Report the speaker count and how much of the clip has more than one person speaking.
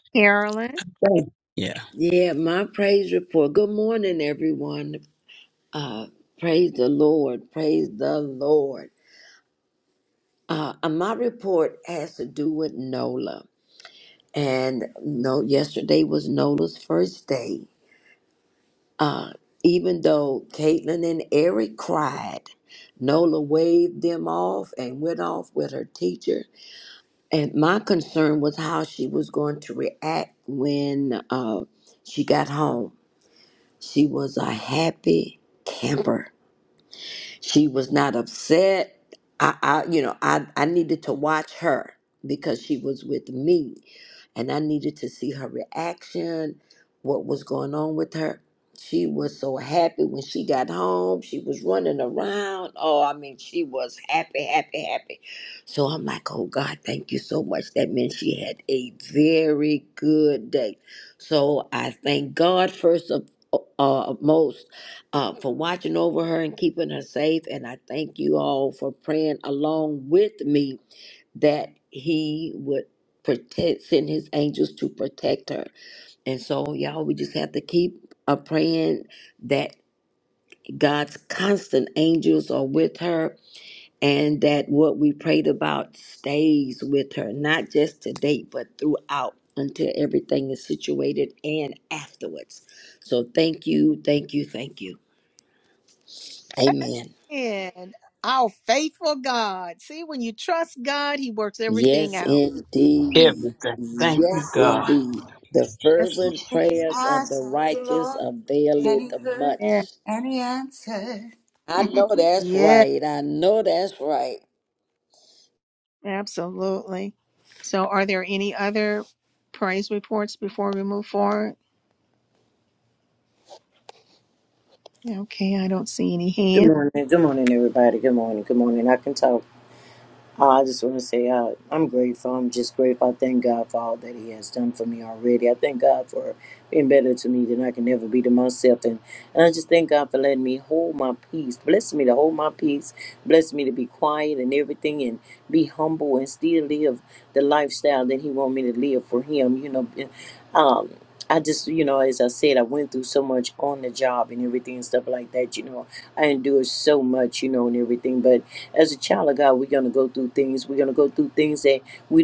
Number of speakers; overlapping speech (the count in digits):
5, about 3%